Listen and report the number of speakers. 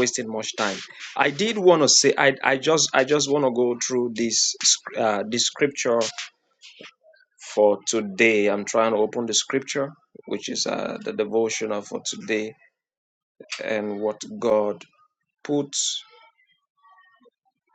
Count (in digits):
1